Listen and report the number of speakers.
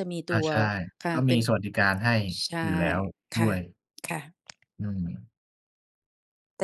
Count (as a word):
two